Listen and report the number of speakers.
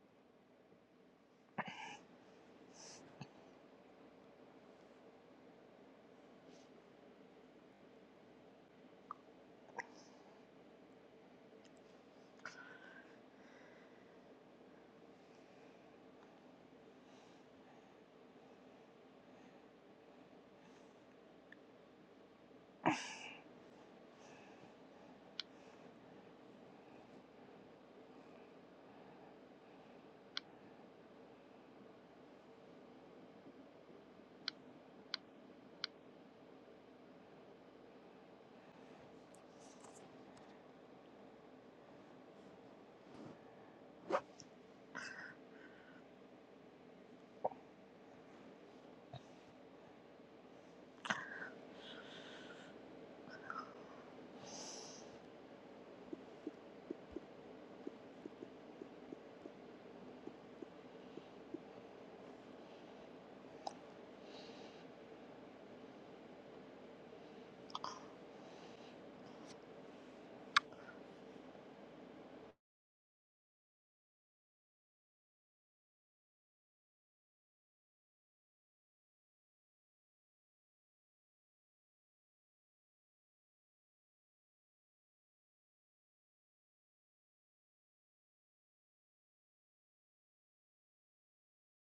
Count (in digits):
0